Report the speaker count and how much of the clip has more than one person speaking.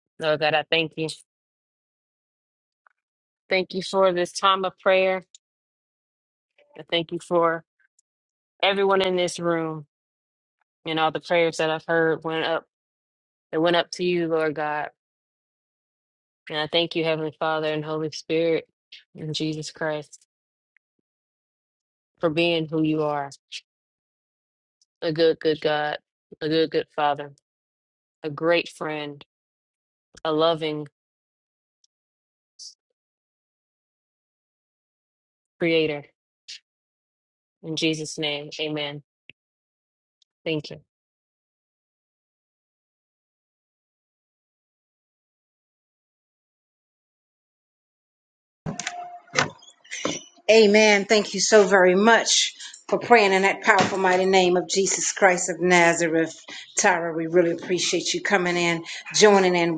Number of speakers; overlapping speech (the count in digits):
2, no overlap